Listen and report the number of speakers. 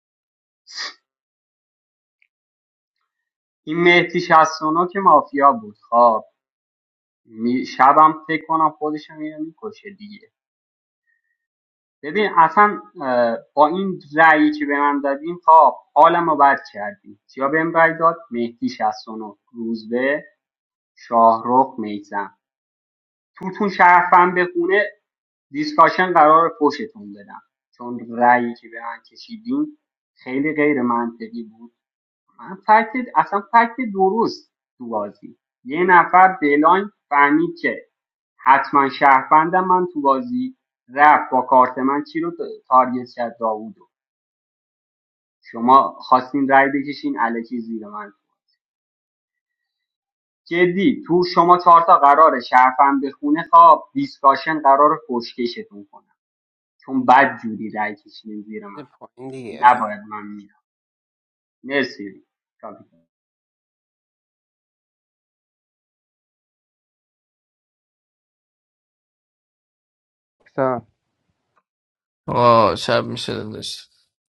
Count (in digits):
3